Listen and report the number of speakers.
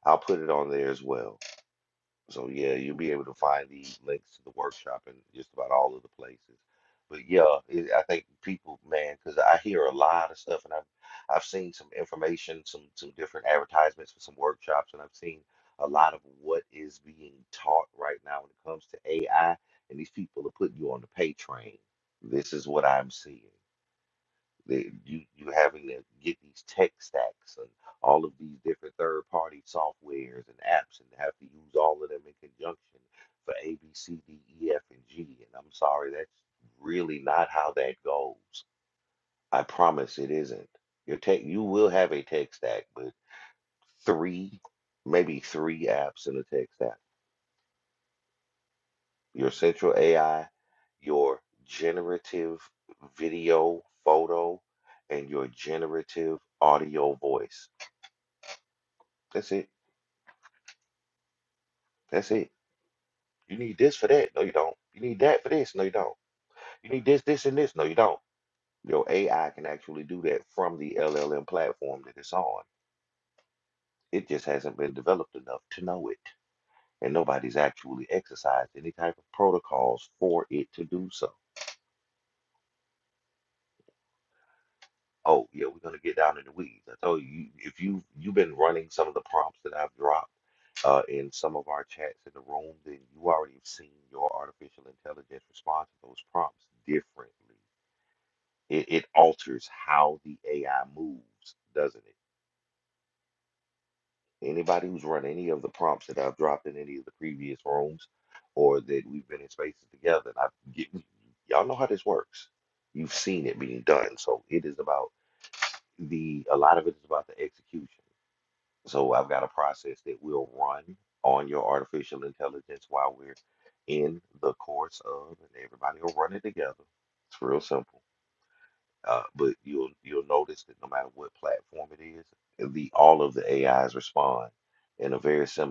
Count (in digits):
1